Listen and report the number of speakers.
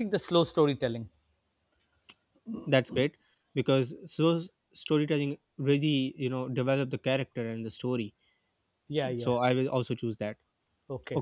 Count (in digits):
2